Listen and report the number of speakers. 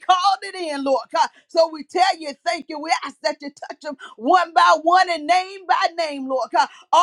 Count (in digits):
1